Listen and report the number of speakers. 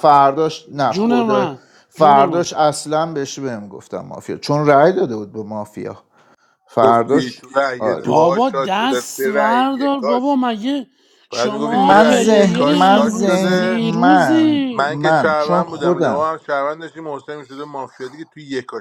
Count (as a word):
three